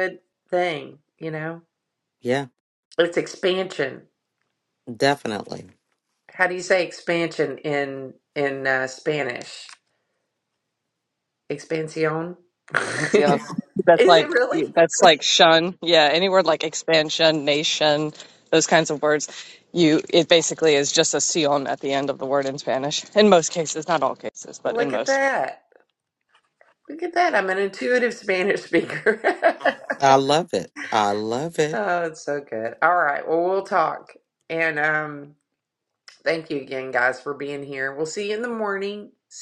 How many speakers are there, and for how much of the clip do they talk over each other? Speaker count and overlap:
3, about 4%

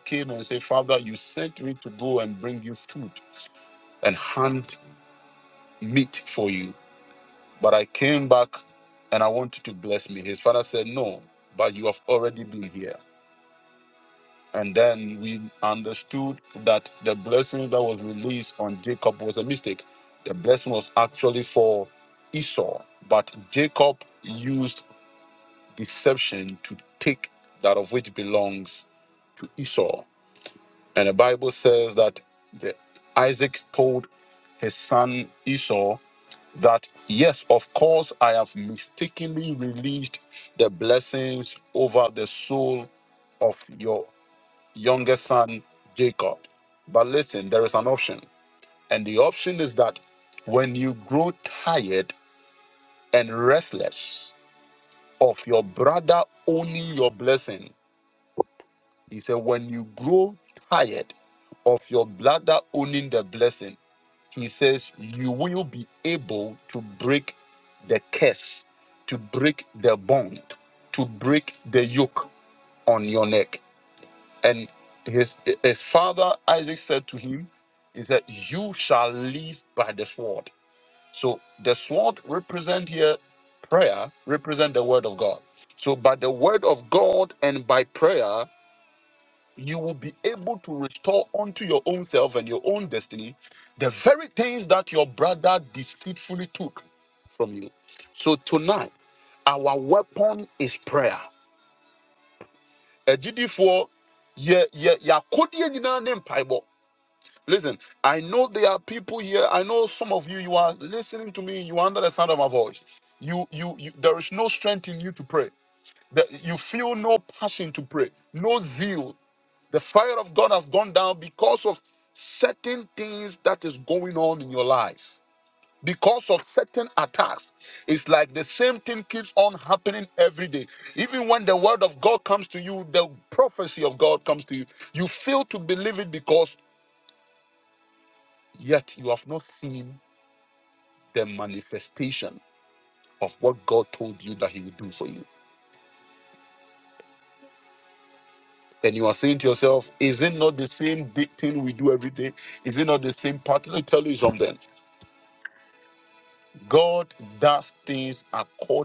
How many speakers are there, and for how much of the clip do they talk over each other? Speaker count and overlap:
1, no overlap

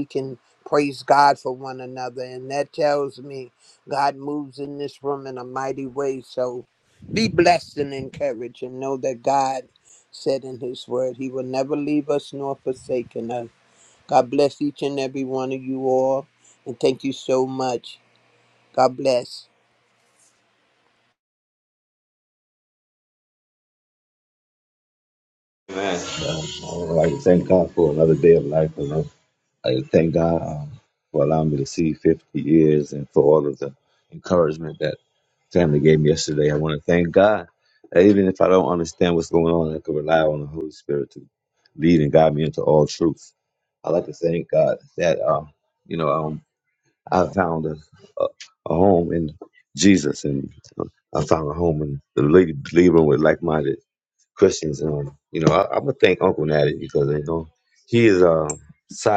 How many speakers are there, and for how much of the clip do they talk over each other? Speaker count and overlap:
2, no overlap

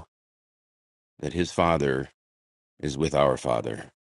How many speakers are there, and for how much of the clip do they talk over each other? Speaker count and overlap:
1, no overlap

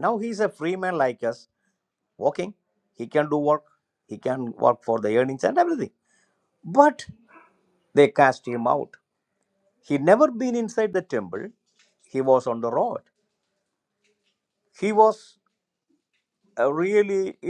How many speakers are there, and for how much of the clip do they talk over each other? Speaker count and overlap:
1, no overlap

